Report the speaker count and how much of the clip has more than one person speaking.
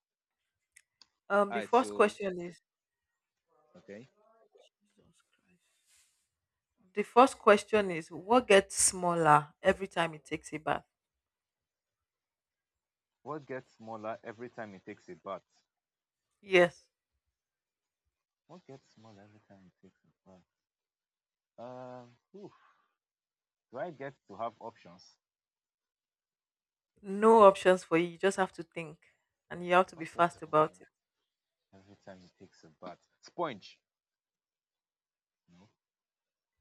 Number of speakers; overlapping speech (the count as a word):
two, about 4%